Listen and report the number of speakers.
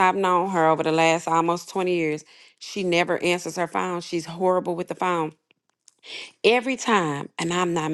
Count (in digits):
1